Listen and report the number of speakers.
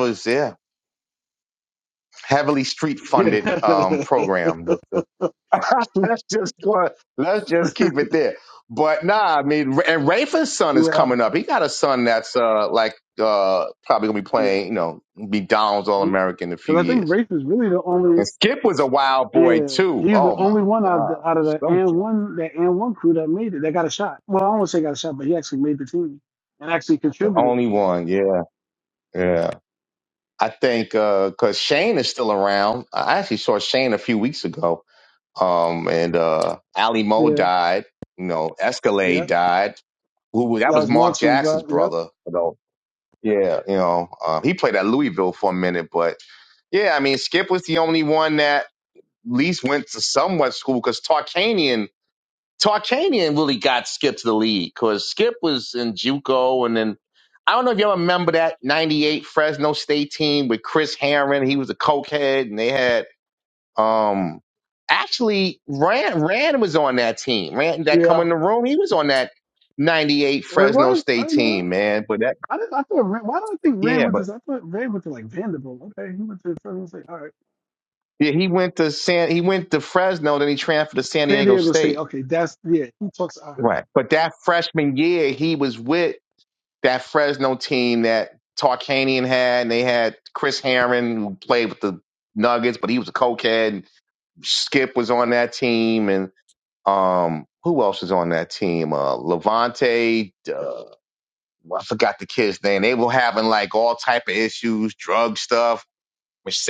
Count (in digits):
2